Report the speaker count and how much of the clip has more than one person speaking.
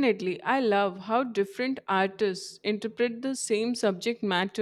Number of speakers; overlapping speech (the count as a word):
one, no overlap